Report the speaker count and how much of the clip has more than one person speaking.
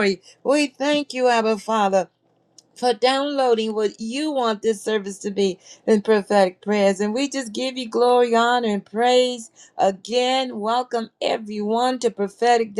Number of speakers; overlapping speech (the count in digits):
1, no overlap